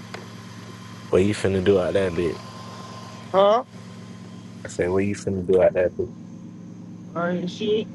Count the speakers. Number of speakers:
two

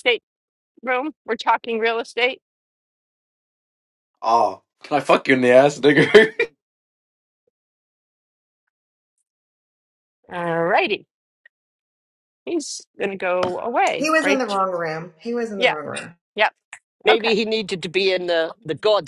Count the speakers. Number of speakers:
four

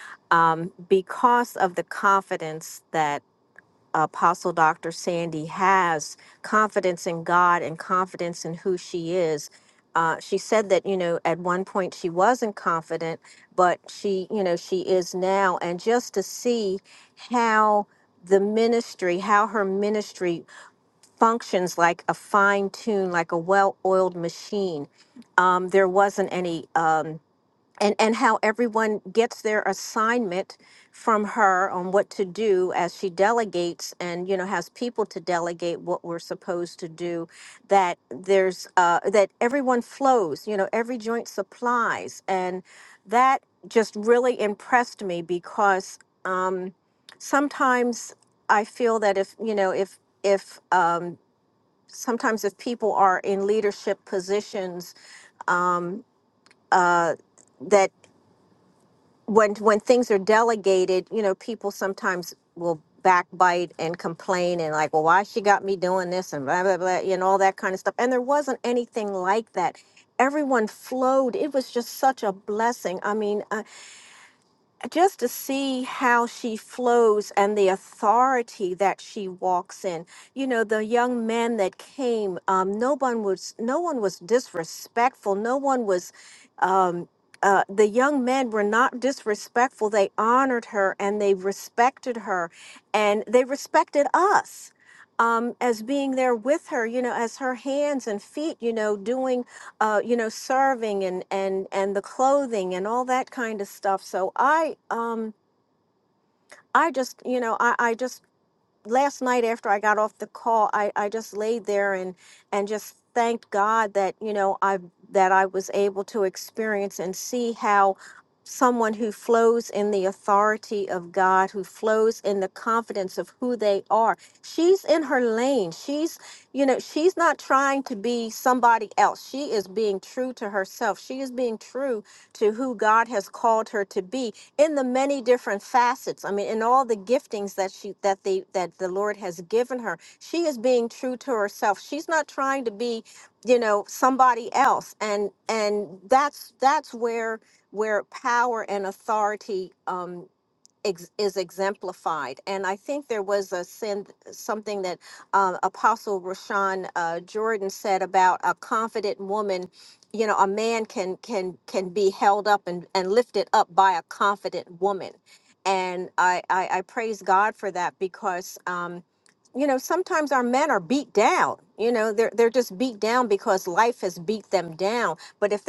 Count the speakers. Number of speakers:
one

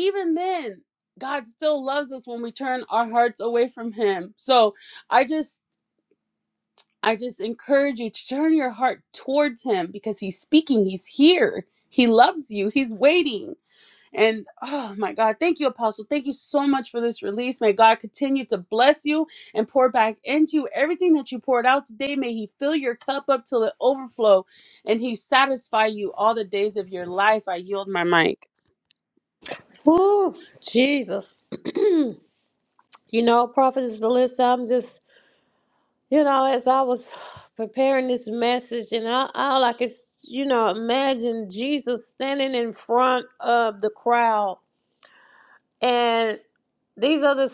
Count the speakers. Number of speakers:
two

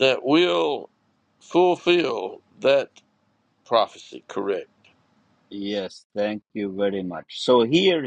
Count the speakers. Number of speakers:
two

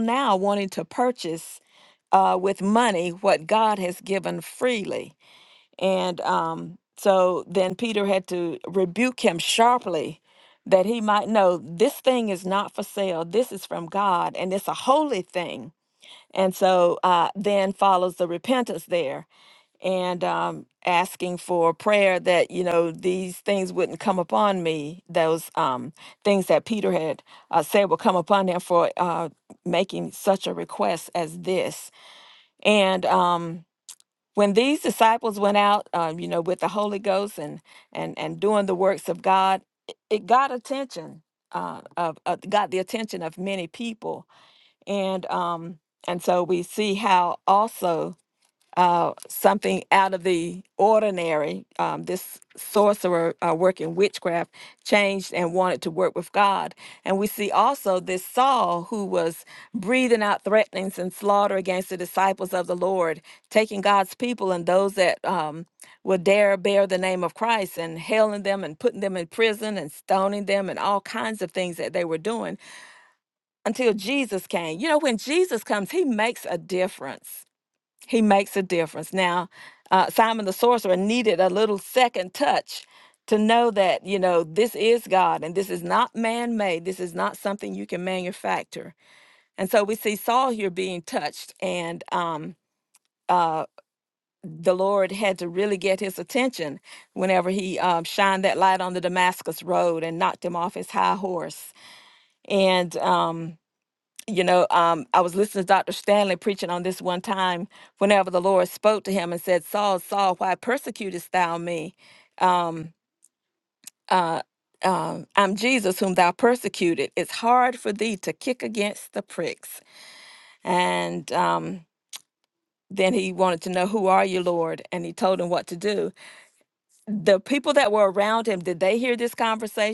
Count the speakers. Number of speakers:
one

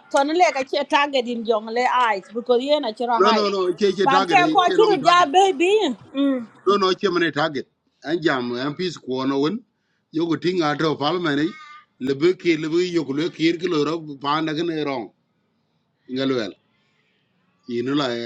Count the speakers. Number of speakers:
two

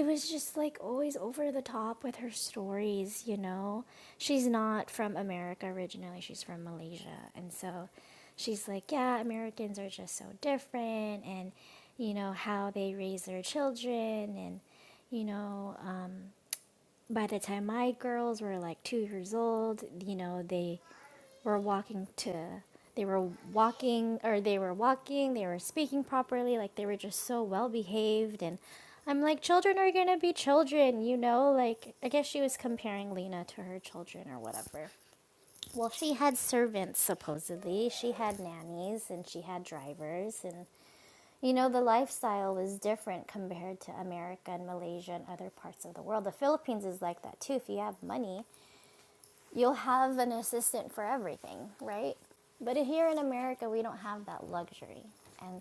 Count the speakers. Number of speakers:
one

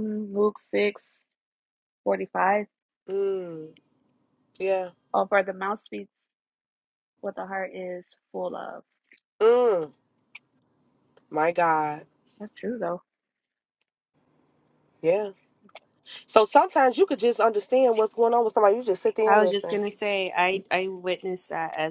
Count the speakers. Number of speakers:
three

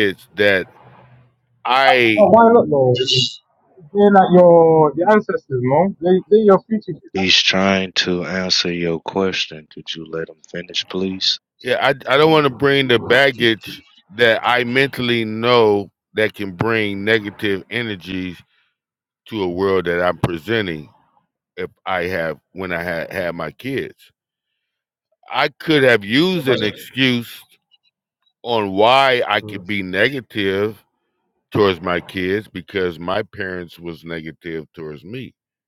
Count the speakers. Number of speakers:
three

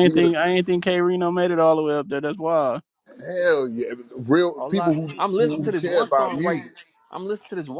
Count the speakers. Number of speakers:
three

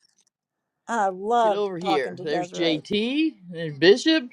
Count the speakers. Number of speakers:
two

